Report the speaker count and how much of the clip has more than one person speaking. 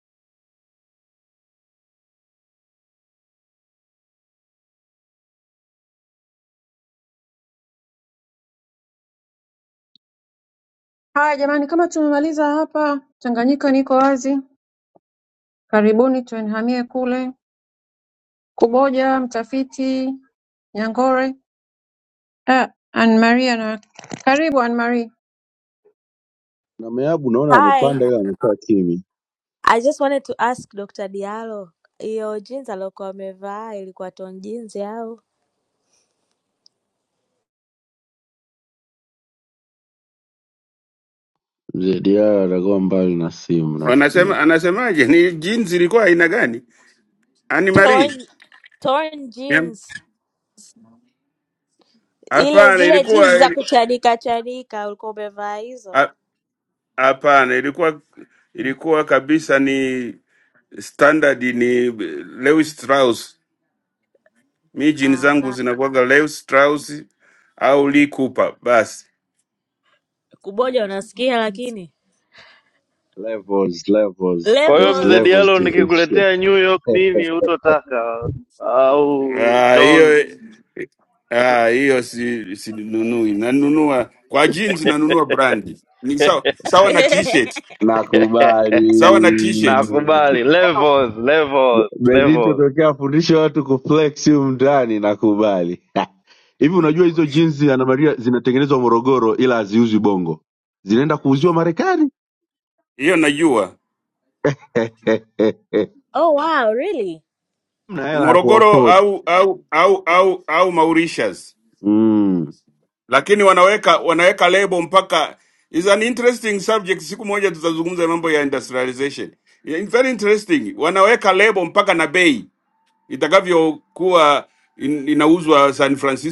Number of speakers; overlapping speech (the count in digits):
5, about 6%